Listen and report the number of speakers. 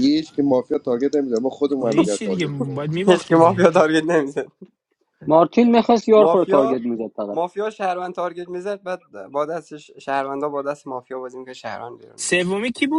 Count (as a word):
four